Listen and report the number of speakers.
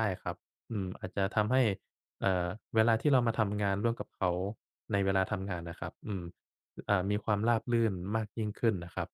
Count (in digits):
1